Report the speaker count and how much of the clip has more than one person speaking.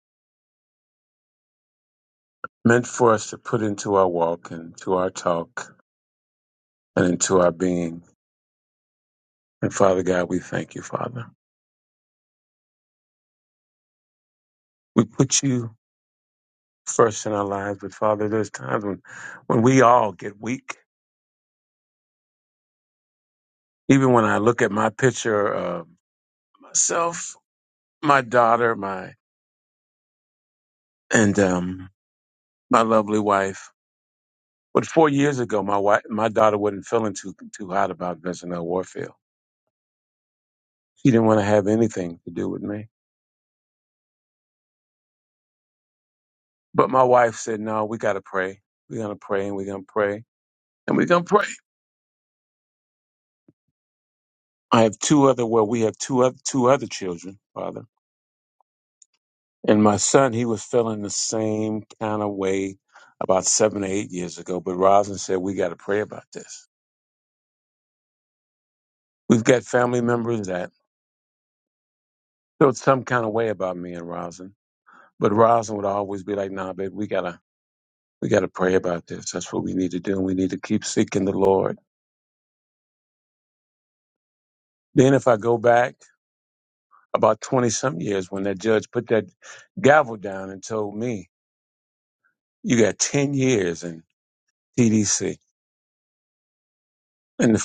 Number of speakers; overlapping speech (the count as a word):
one, no overlap